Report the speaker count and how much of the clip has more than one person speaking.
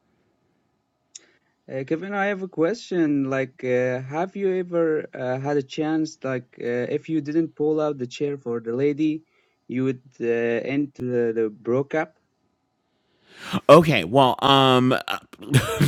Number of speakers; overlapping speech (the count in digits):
2, no overlap